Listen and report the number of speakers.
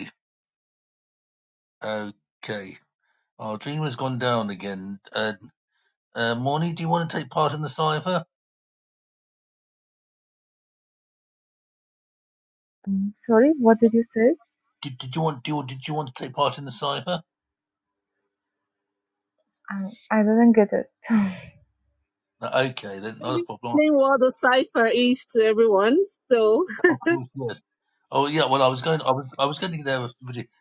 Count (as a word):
three